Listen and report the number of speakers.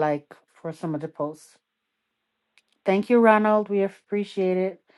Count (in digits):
1